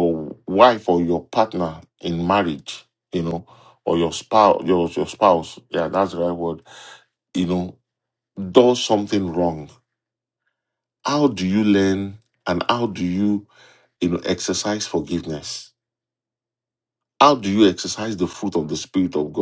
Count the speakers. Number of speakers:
1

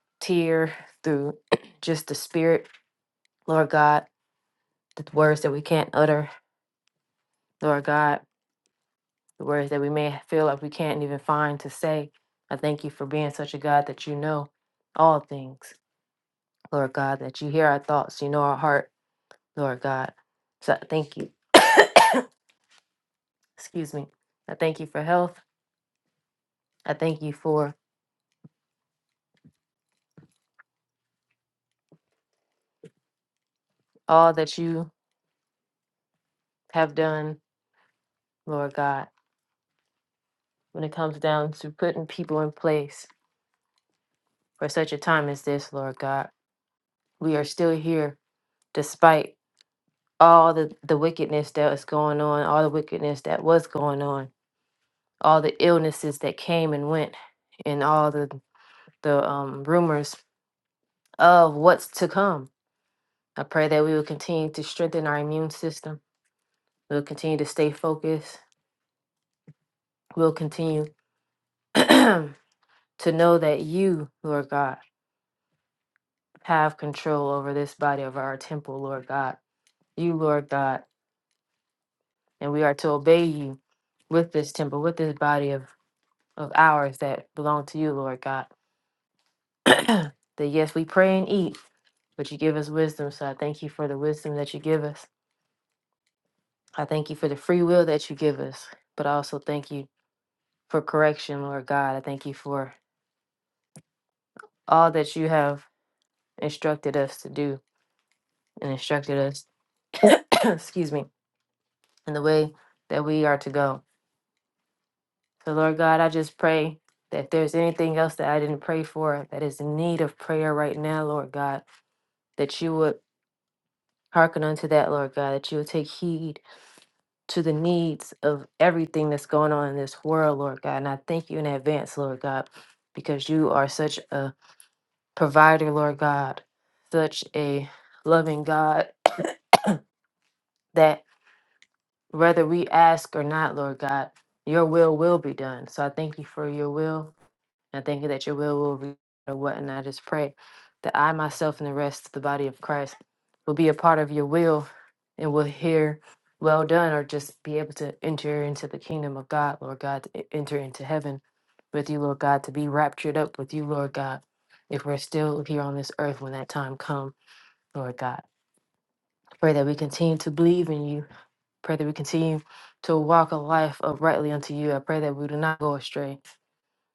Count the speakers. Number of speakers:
1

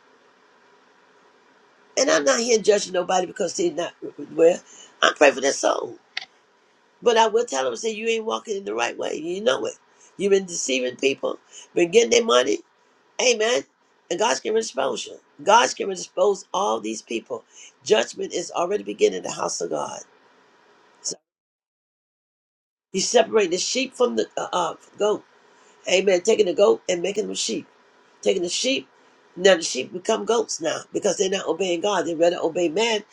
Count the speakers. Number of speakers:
1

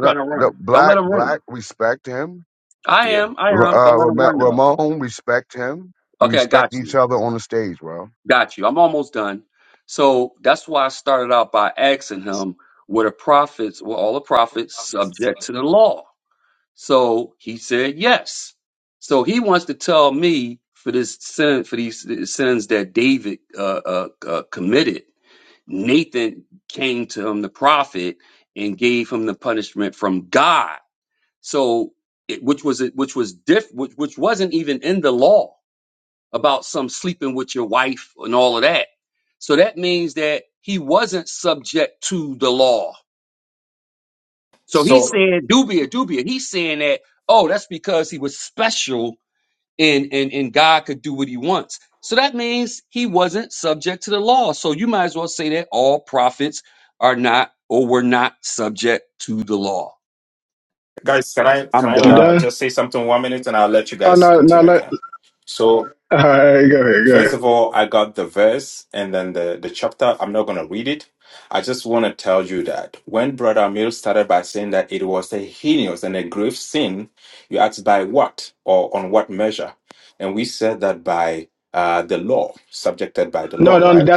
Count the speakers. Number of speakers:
4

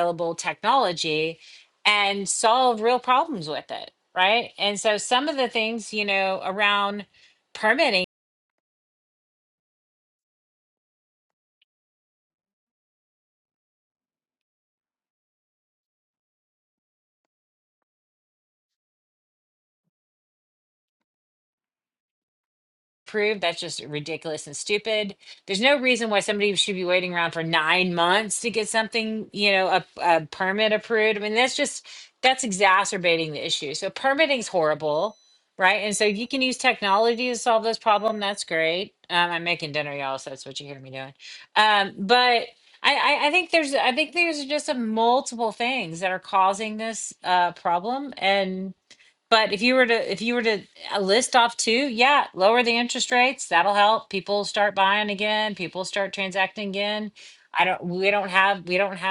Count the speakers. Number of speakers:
1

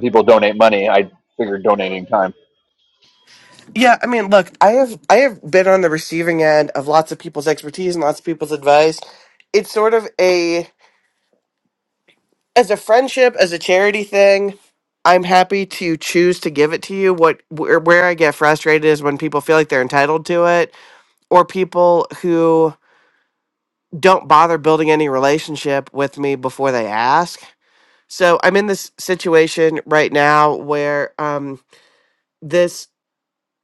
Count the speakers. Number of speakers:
2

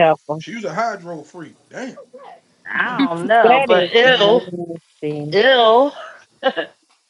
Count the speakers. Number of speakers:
3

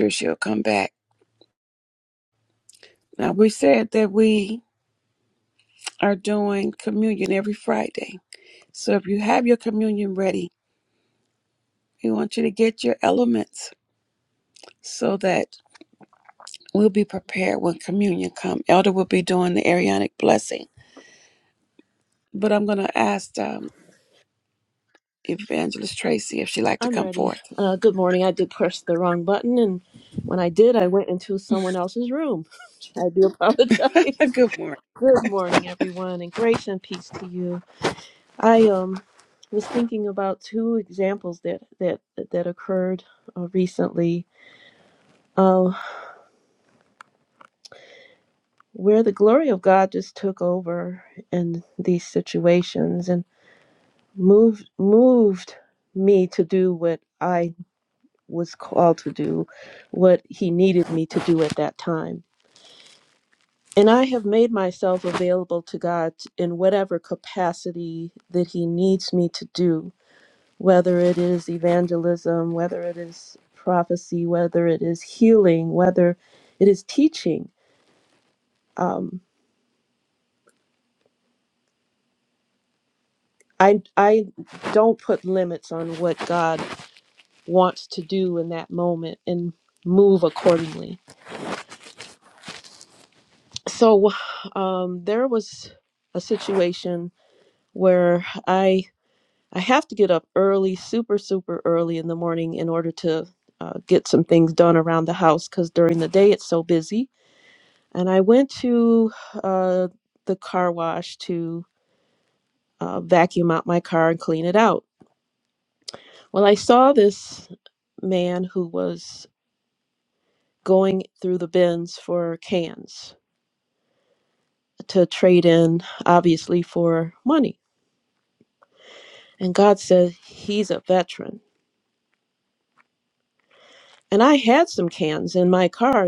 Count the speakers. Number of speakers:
2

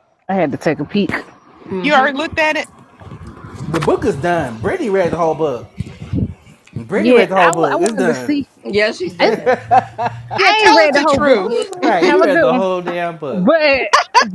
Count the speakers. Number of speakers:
4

